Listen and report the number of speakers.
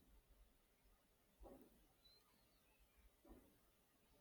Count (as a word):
zero